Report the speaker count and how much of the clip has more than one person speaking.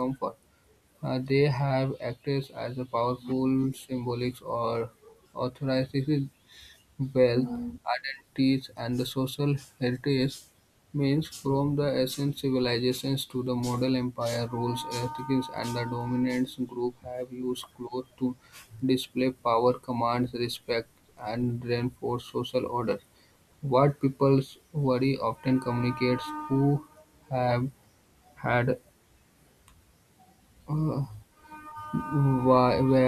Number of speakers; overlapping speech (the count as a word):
one, no overlap